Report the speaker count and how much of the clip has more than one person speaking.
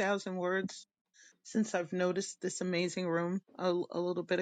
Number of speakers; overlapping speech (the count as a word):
one, no overlap